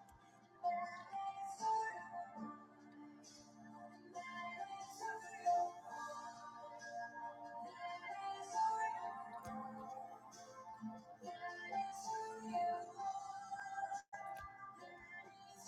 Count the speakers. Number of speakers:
0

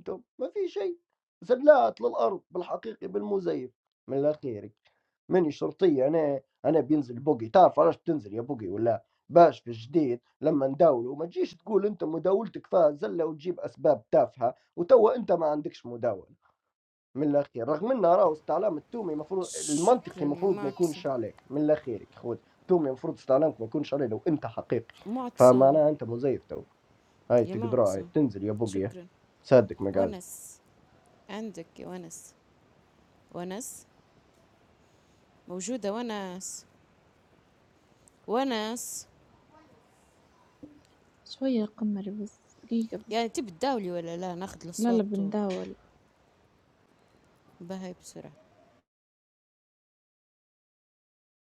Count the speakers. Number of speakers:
3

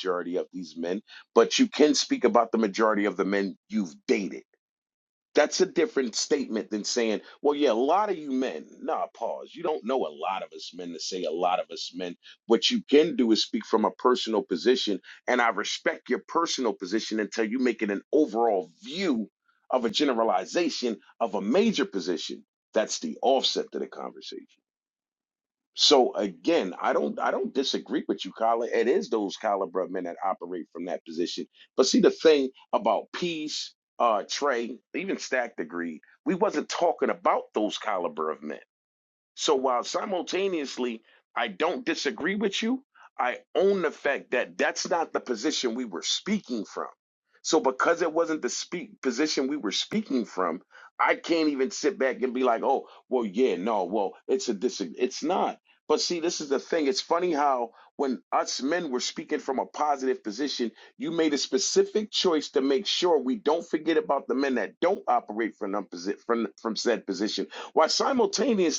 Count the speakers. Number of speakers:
1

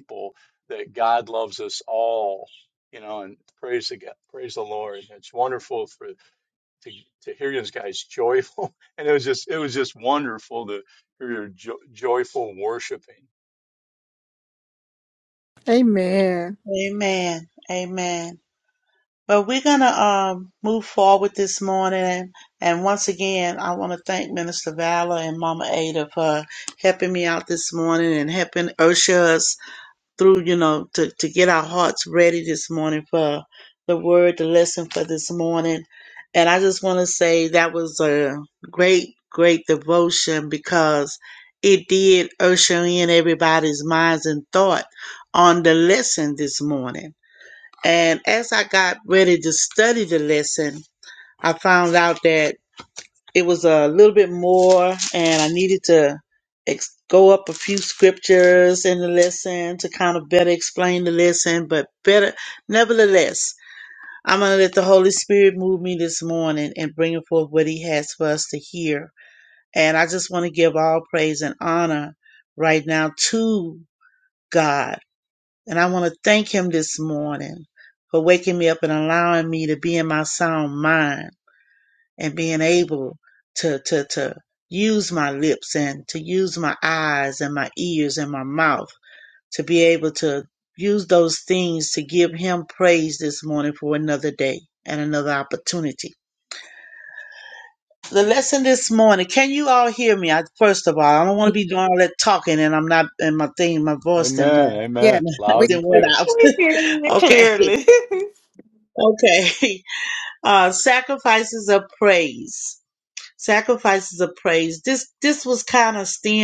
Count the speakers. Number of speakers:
4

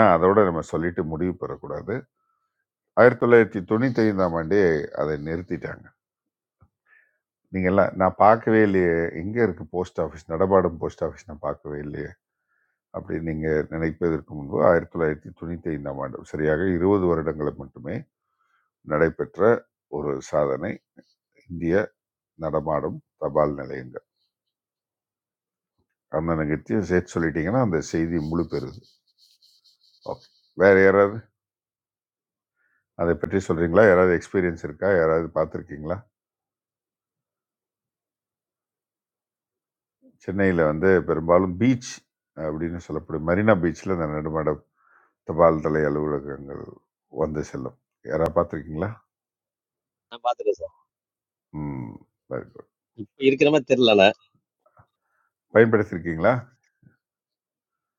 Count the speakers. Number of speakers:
2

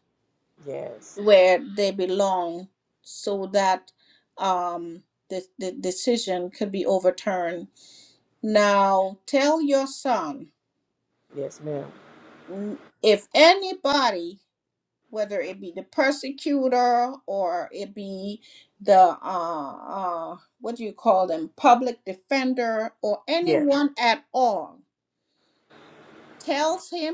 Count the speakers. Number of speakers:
2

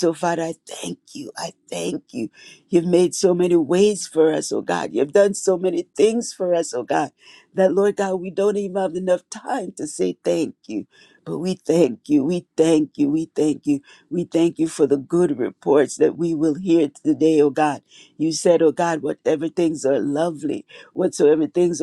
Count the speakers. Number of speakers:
1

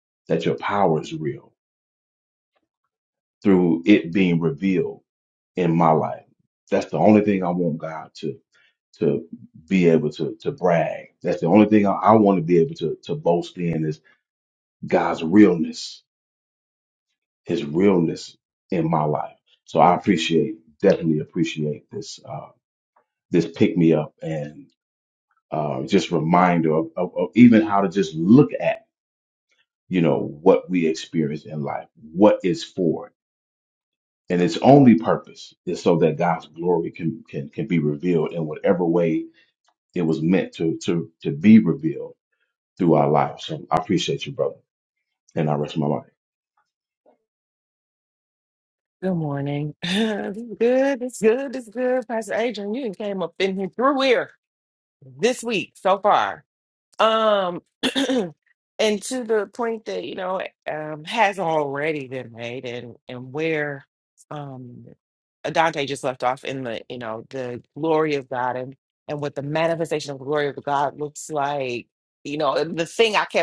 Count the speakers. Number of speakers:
2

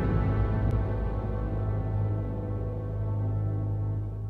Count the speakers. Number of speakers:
0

